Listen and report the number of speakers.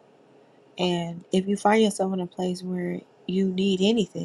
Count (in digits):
1